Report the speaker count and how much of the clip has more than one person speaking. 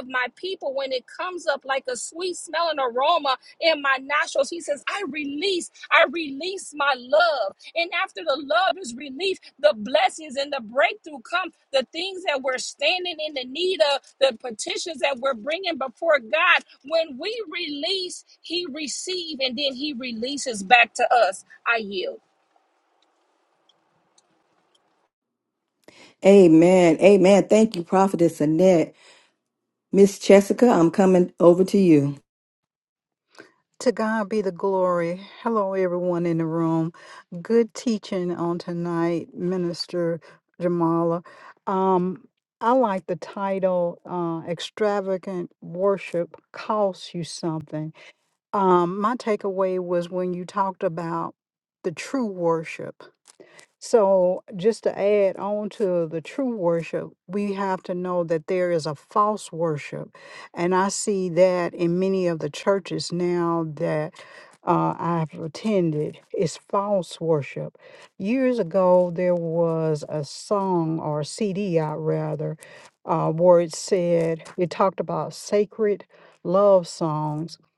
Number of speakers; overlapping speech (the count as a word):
three, no overlap